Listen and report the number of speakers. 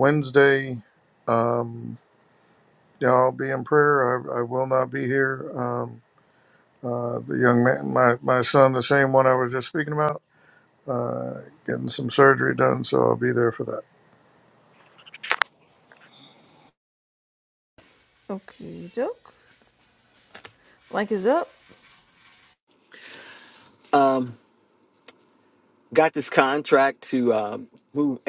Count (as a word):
three